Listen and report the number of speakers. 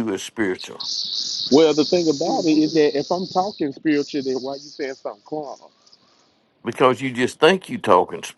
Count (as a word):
two